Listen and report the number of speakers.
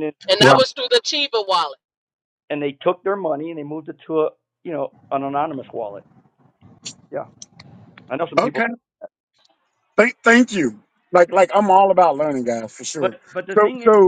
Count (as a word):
three